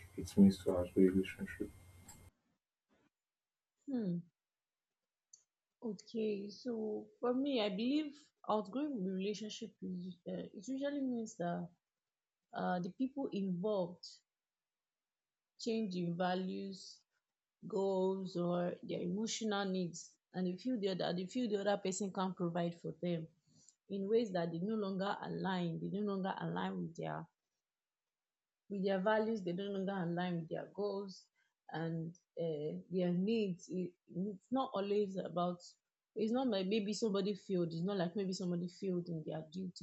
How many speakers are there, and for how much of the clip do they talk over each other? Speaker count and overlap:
two, no overlap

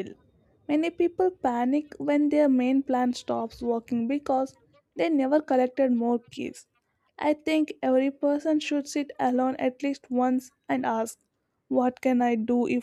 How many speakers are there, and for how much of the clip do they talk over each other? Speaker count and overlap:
one, no overlap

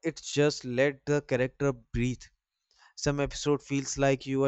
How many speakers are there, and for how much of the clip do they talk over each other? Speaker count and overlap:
one, no overlap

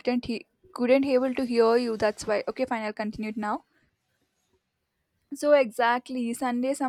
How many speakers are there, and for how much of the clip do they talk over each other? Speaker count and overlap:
one, no overlap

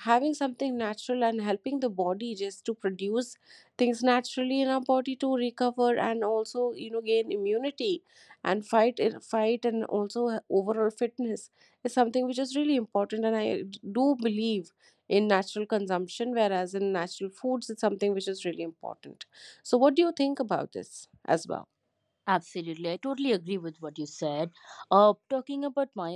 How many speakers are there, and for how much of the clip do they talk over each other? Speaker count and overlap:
two, no overlap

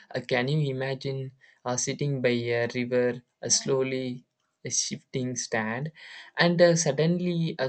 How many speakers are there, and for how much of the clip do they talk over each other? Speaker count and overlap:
one, no overlap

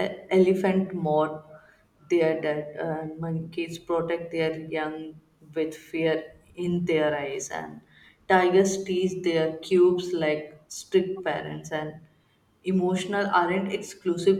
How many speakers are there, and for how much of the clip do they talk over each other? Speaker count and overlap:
one, no overlap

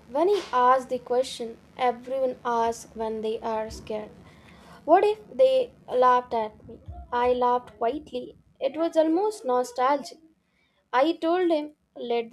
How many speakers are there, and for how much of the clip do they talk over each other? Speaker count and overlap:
one, no overlap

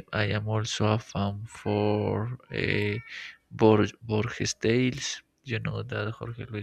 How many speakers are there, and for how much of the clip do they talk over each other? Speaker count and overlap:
one, no overlap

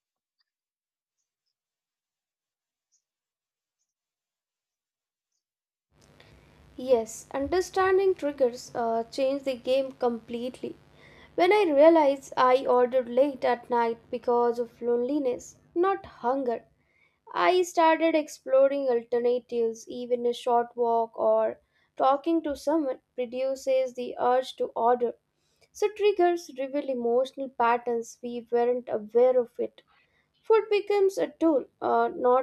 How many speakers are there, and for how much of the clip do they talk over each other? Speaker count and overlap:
one, no overlap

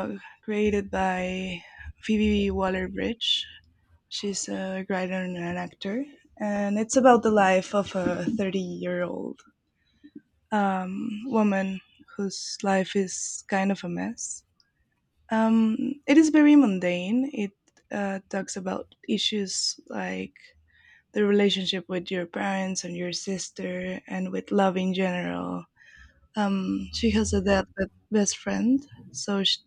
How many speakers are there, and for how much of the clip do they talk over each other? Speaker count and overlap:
one, no overlap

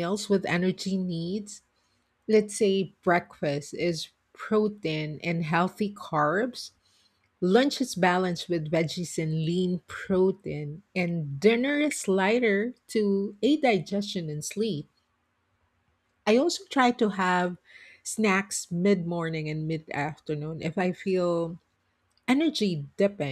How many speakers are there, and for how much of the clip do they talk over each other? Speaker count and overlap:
one, no overlap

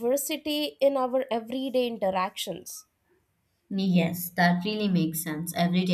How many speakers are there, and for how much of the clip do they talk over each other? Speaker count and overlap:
two, no overlap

